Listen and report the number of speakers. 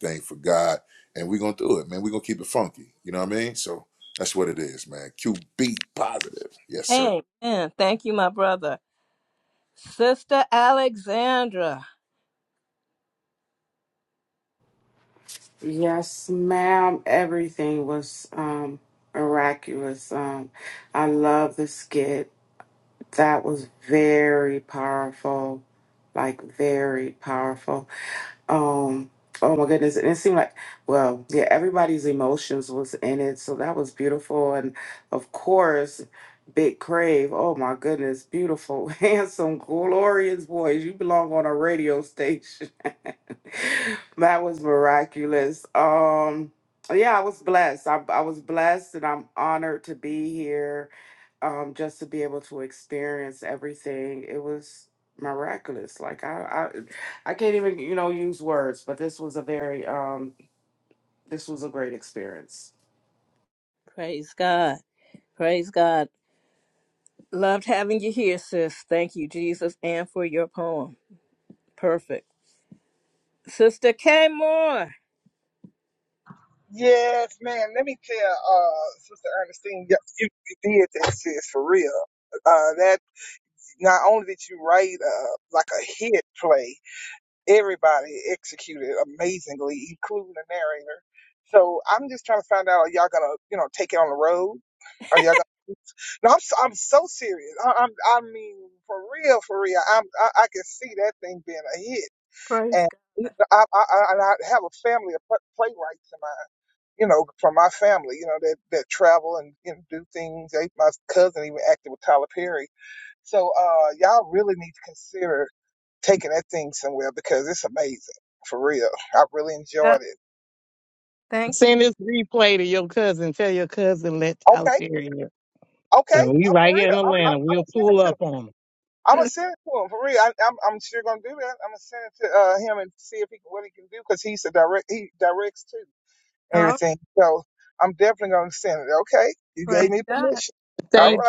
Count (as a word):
five